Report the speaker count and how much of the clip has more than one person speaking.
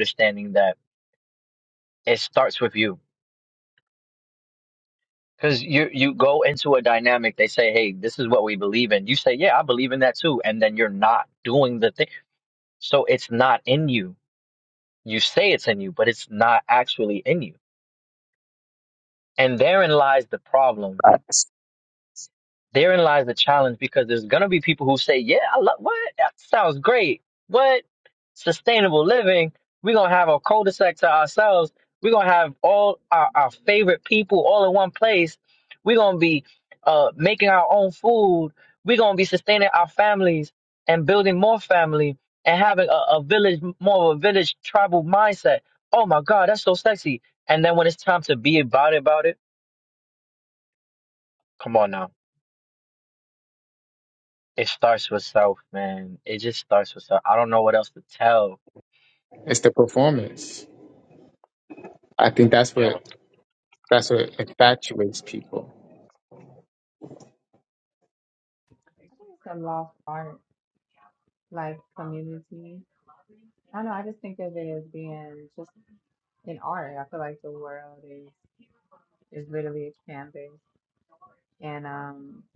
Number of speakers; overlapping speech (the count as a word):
three, under 1%